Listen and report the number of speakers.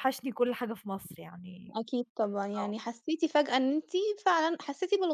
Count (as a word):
two